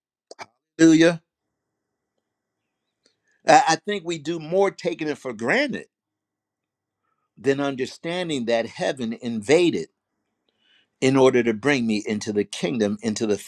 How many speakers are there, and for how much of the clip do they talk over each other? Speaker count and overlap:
1, no overlap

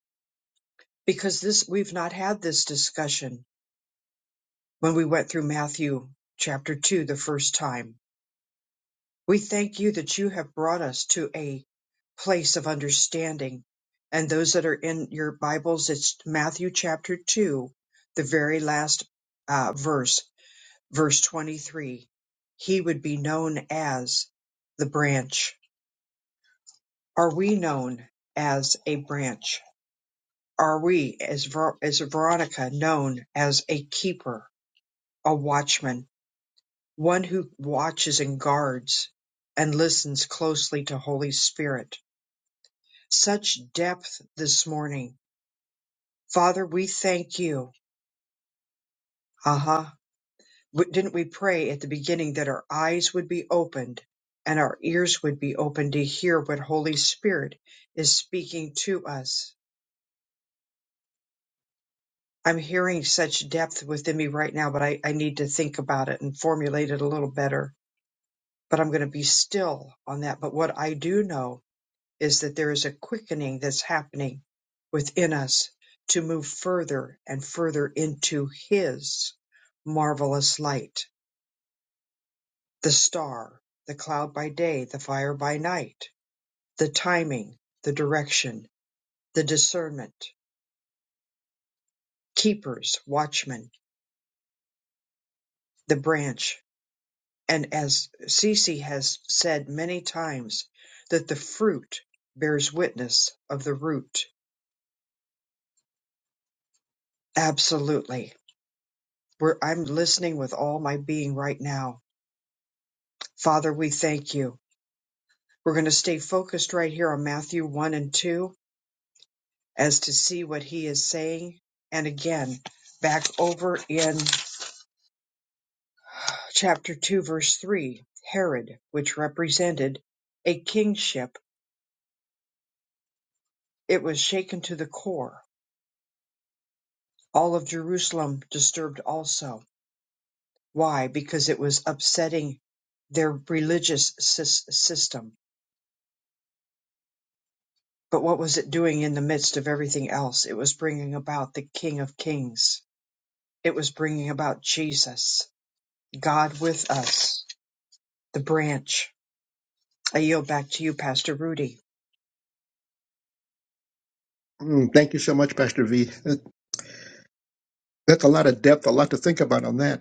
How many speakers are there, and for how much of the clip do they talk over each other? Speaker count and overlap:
2, no overlap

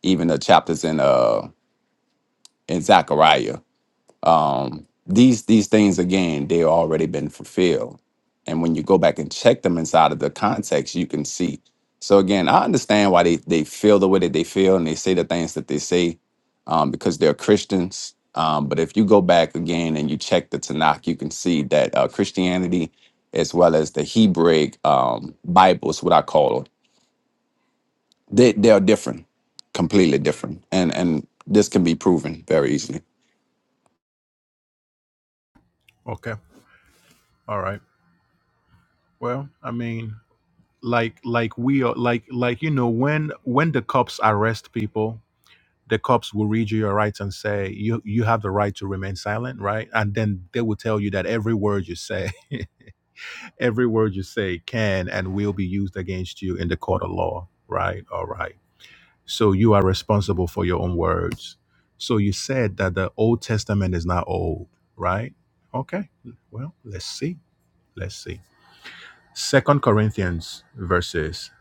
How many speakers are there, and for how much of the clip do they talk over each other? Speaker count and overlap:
2, no overlap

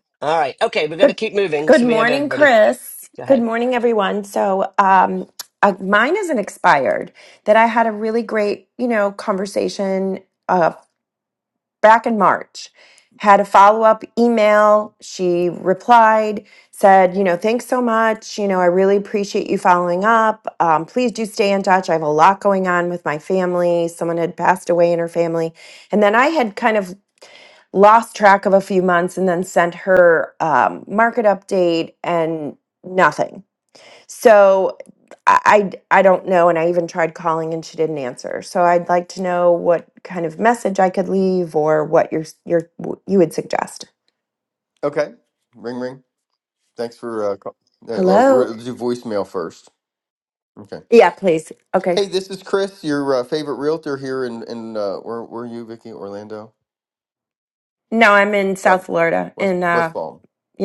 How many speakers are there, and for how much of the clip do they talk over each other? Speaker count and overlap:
3, about 4%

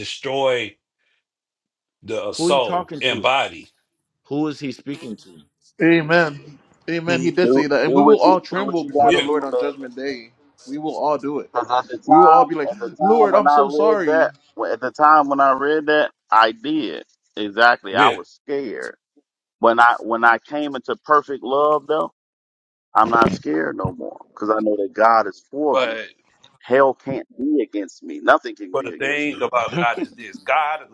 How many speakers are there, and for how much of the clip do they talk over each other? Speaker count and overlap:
4, about 21%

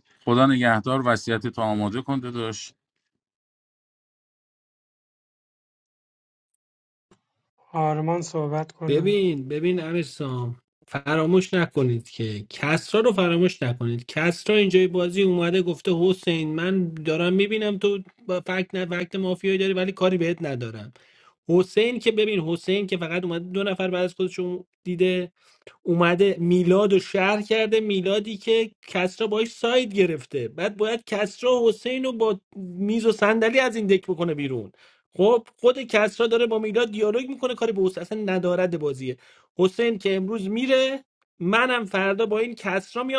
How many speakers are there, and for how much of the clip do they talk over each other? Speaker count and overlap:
3, about 1%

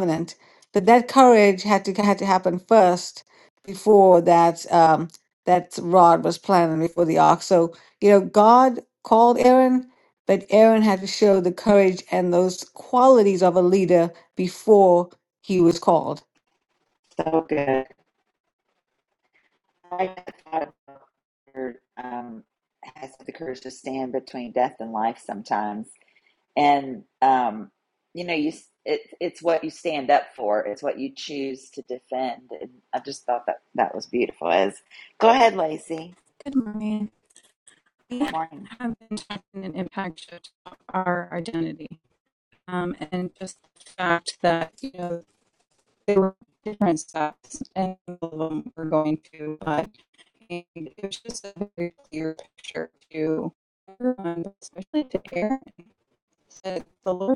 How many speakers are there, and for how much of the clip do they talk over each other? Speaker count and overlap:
3, under 1%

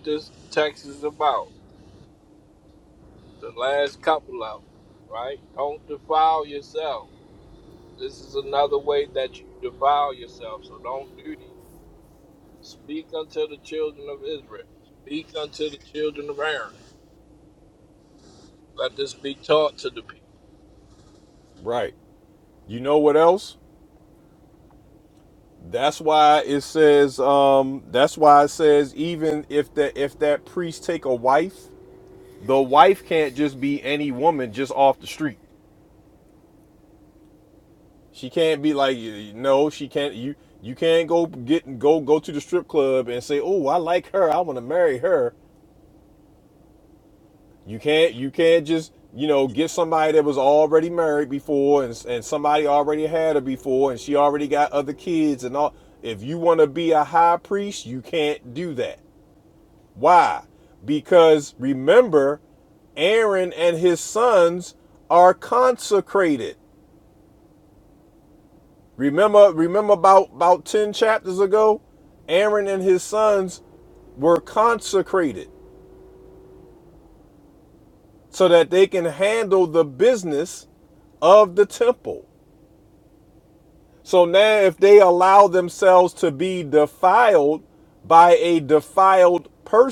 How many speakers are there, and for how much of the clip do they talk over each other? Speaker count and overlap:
2, no overlap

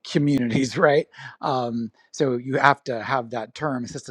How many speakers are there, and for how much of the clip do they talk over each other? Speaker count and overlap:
1, no overlap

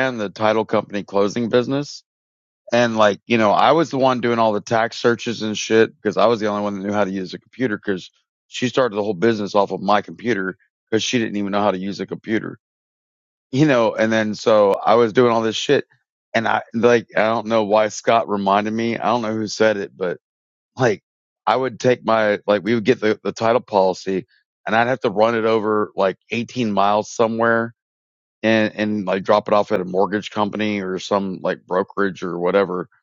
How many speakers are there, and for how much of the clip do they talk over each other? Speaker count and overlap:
1, no overlap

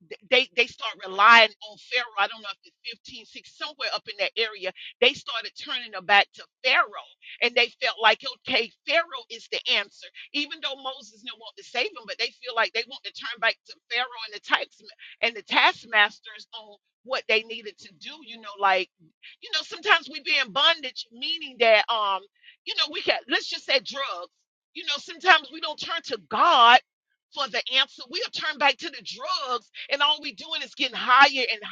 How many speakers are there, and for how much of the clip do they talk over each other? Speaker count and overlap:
1, no overlap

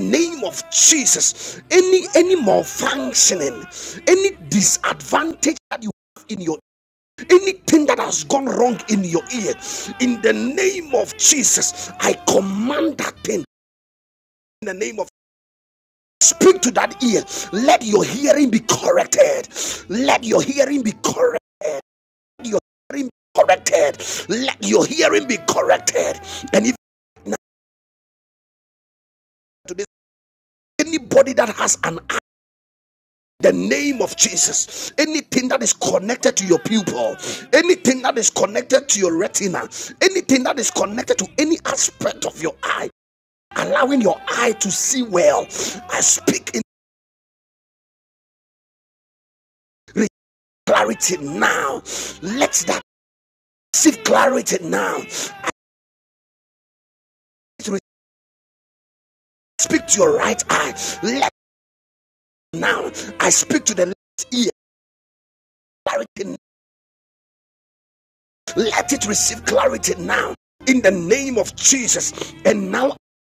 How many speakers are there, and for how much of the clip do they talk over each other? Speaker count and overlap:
1, no overlap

